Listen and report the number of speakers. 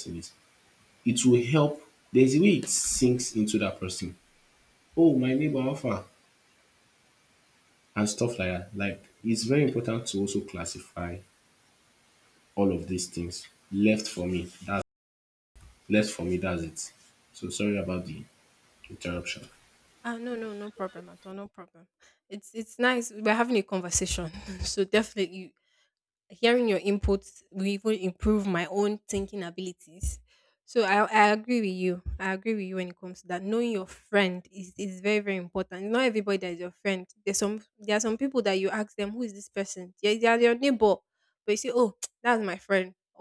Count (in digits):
2